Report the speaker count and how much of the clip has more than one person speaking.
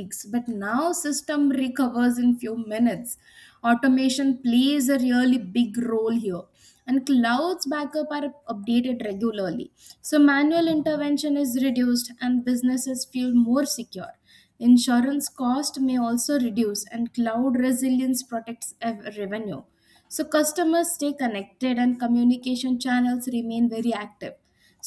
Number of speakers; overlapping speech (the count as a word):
one, no overlap